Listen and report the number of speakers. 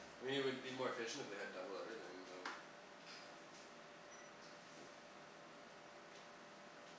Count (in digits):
1